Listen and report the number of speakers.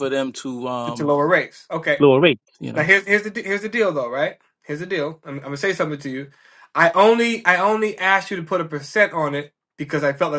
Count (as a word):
two